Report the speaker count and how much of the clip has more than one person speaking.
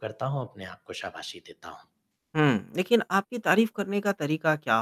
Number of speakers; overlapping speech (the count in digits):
2, no overlap